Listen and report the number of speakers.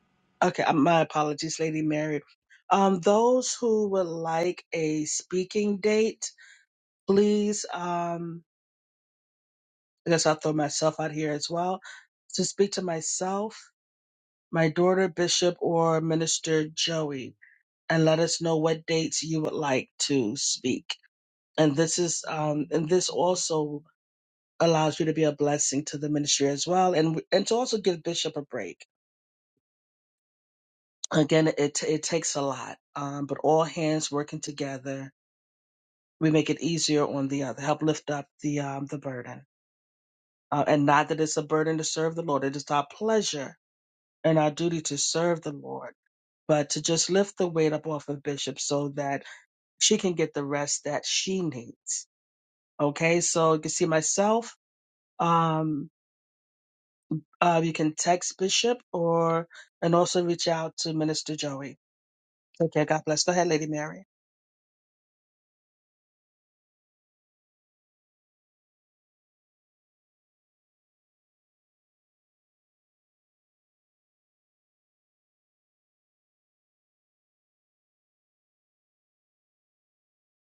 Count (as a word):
one